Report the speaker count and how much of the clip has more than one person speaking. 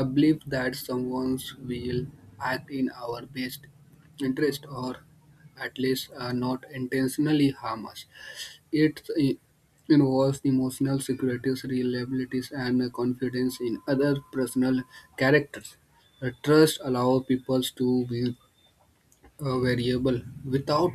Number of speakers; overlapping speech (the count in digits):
1, no overlap